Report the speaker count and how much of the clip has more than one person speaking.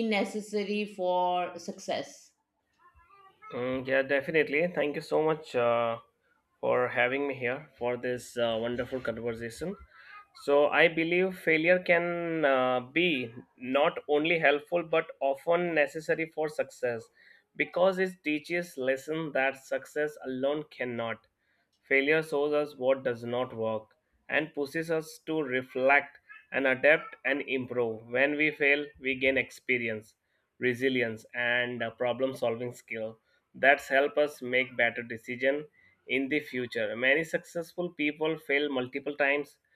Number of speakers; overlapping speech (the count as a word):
two, no overlap